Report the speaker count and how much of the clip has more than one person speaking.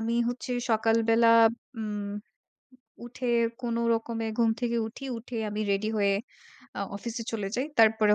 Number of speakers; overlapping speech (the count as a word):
one, no overlap